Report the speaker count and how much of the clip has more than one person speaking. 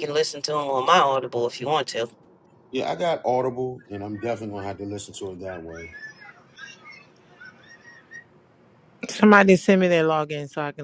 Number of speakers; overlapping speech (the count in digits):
3, no overlap